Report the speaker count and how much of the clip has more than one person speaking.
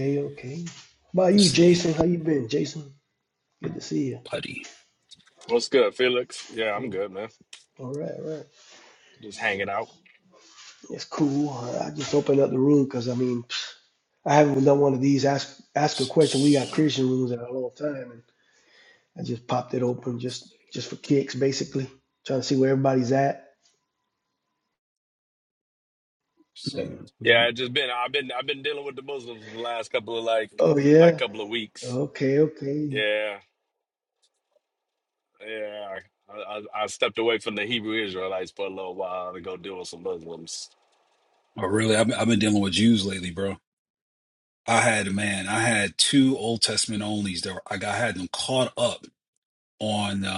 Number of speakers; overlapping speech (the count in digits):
3, about 5%